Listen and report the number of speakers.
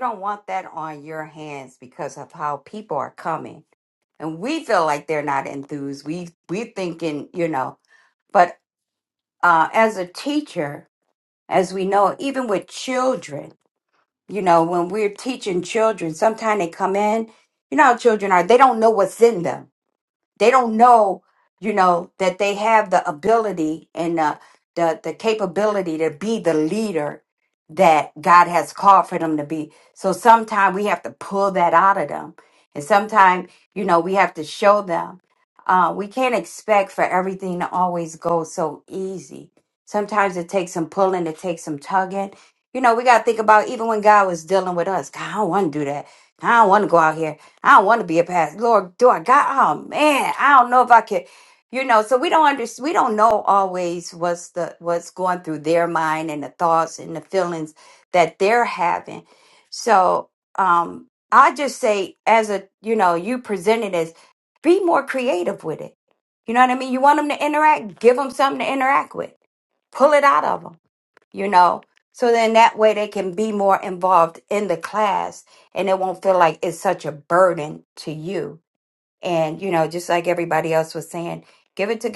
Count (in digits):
1